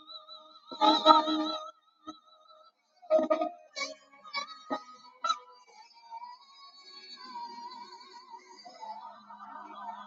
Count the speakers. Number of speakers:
0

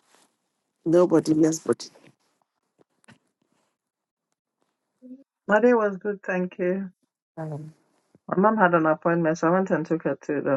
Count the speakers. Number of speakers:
2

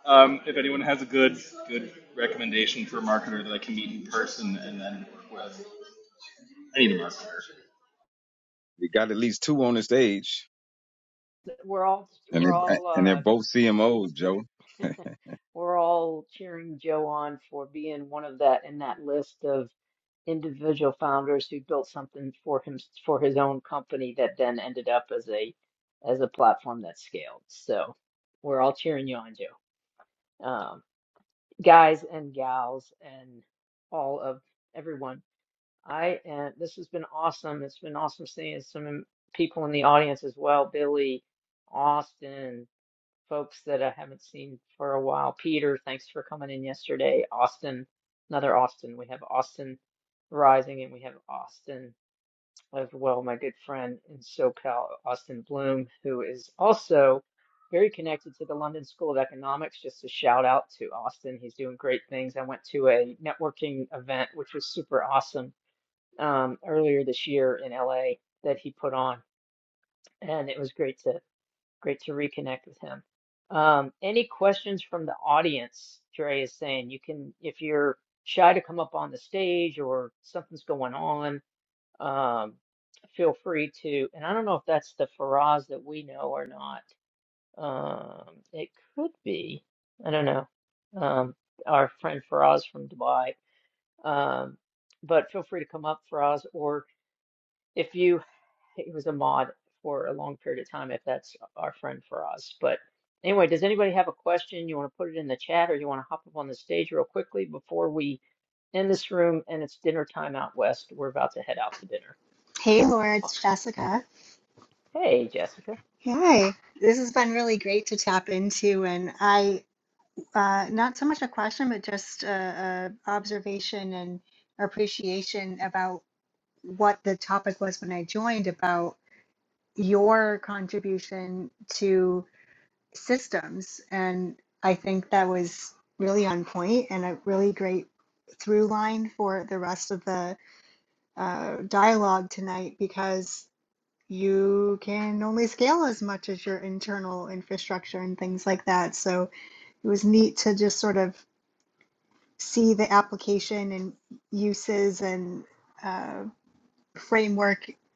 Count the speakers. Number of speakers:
4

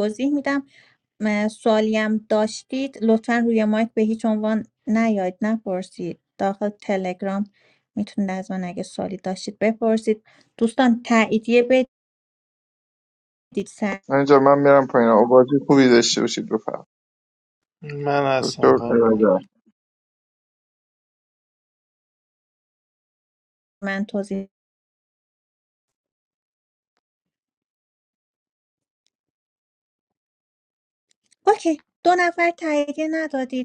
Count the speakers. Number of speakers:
3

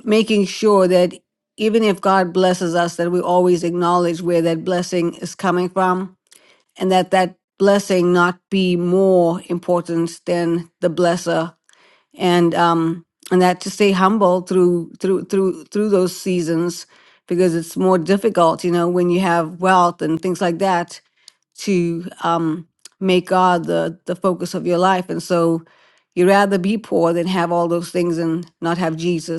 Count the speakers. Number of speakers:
1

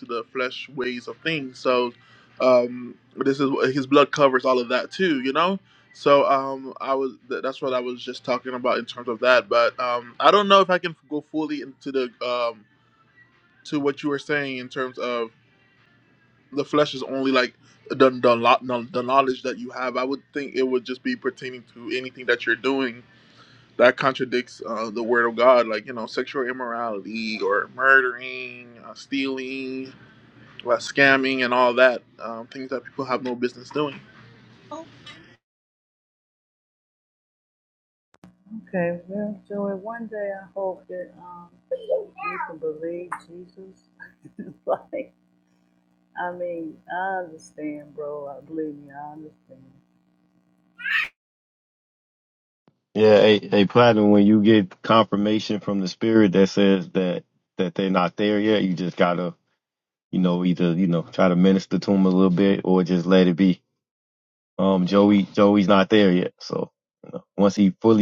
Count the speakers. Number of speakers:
3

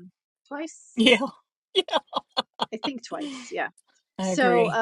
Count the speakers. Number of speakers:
2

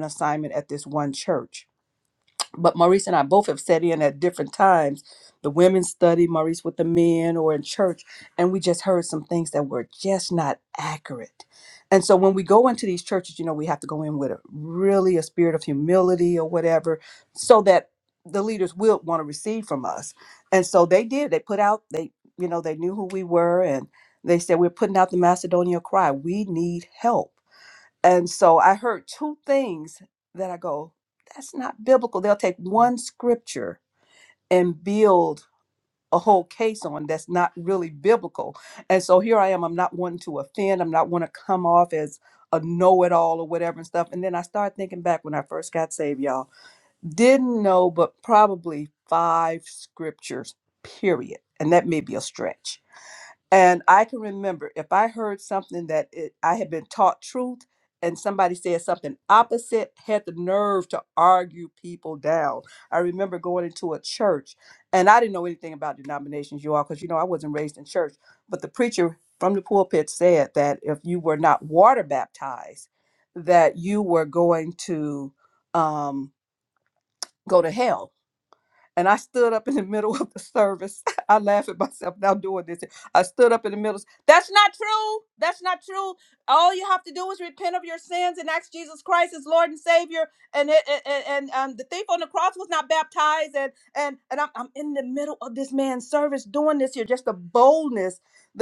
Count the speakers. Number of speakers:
1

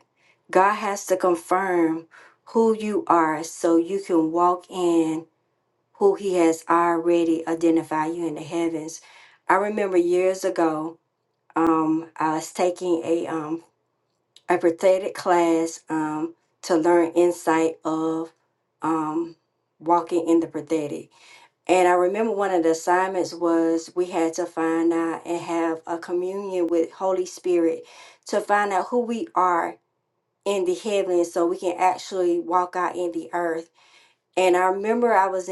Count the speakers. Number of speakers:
1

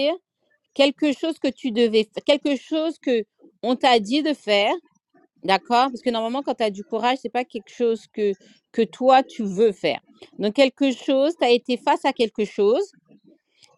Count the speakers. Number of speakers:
1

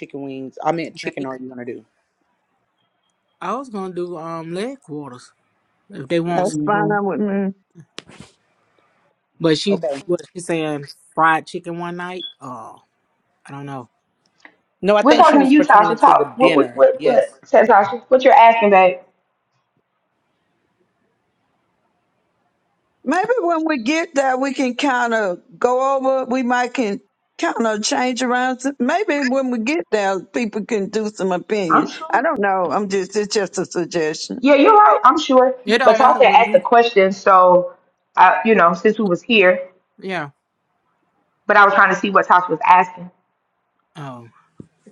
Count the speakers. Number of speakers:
4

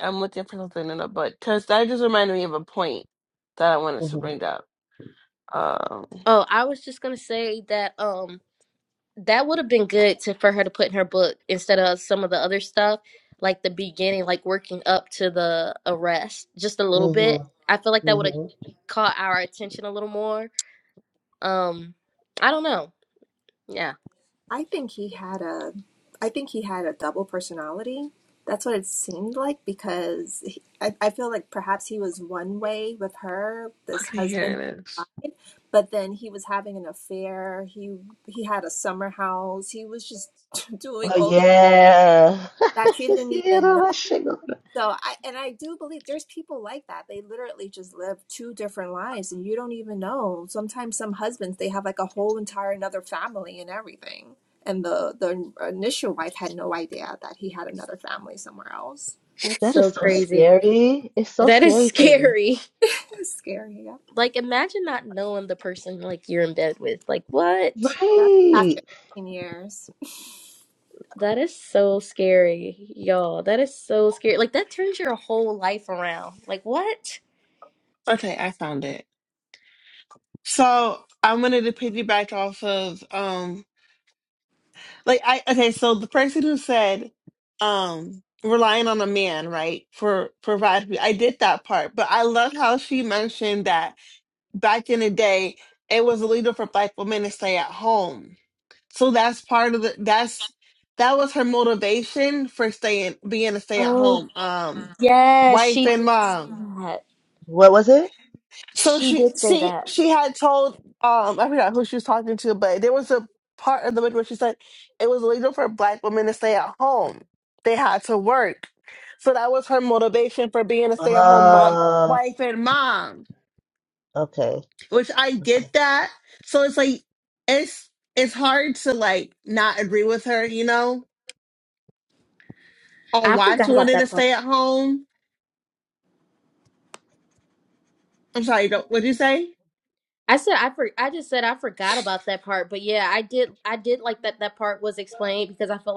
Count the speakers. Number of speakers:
4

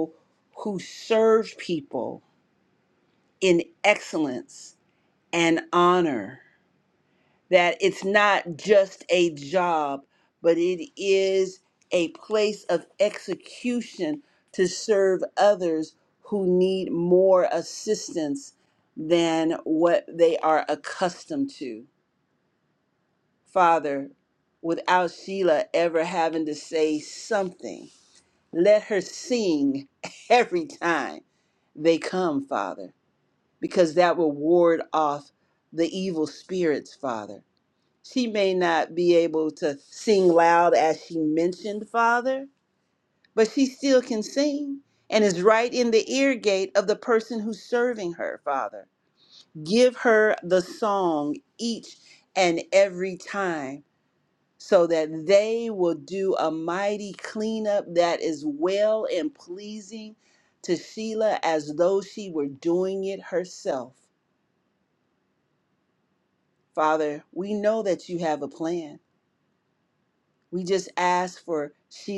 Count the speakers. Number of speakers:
1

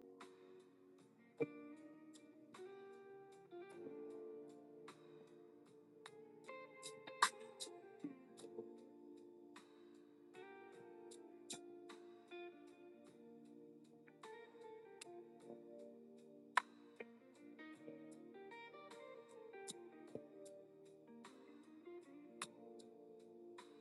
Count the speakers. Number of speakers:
0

